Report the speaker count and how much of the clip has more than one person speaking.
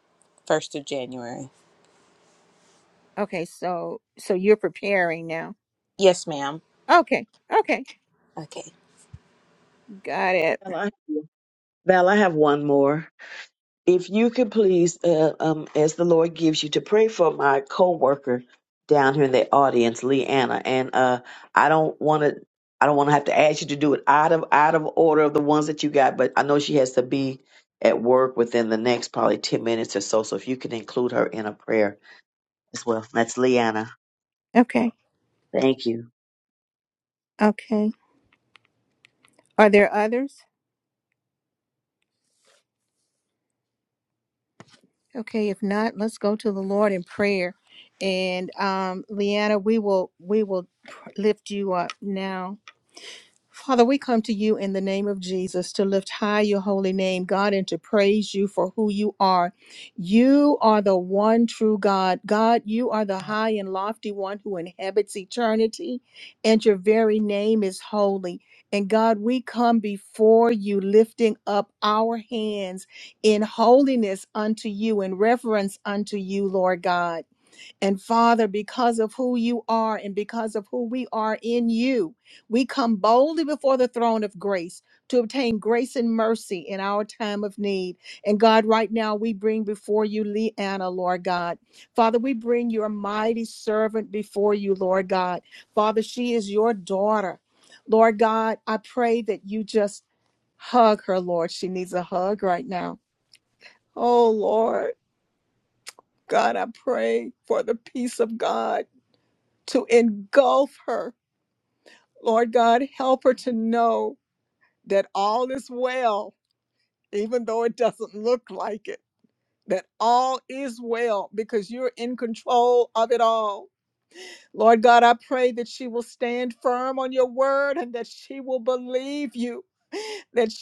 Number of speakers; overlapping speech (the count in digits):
3, no overlap